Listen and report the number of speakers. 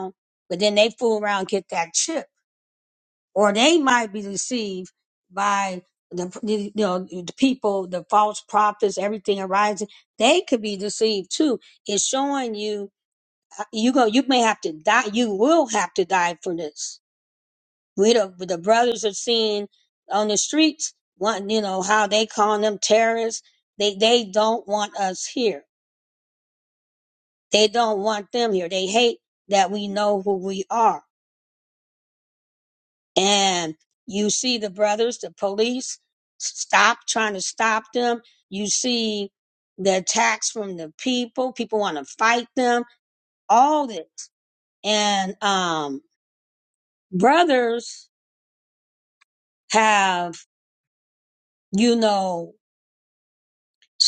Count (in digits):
1